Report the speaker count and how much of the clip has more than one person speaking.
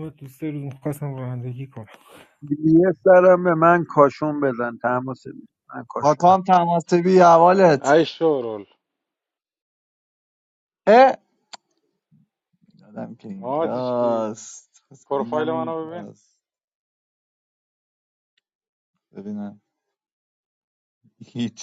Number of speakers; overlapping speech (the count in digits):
4, about 9%